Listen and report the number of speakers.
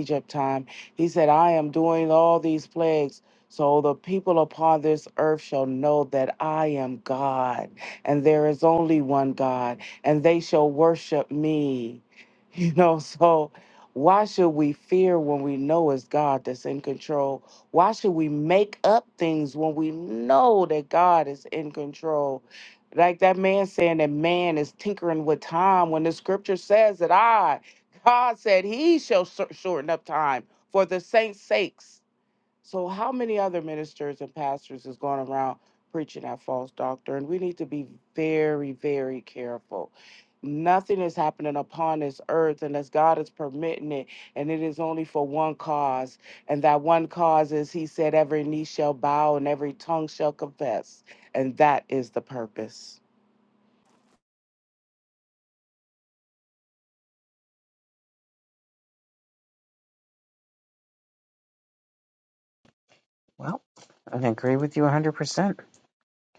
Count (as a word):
two